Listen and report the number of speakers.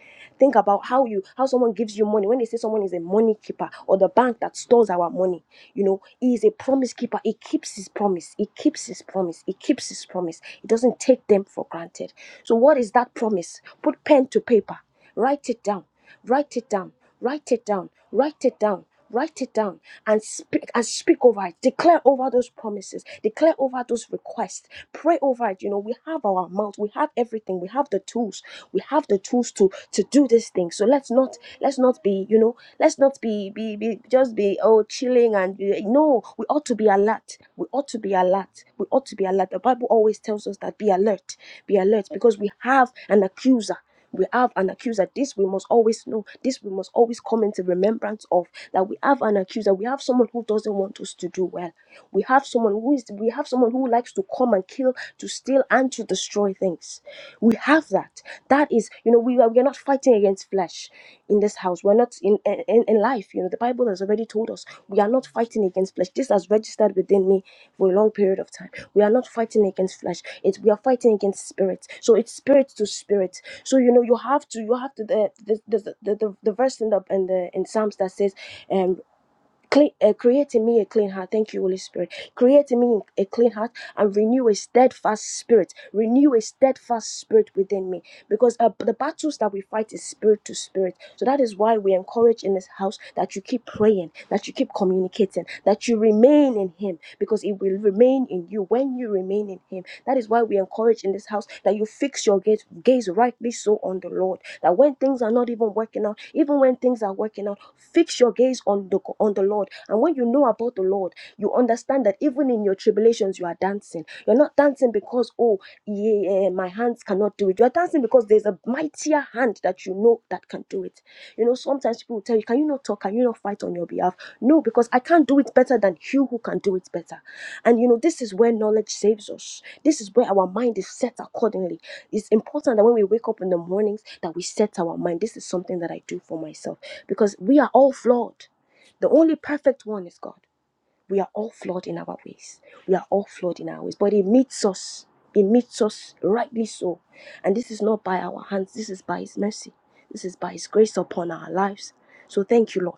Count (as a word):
one